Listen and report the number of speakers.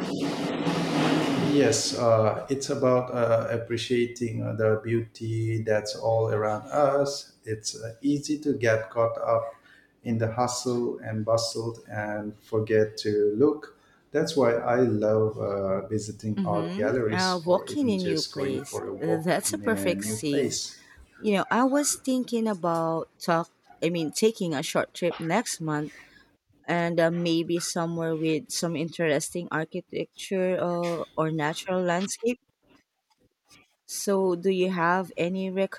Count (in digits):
2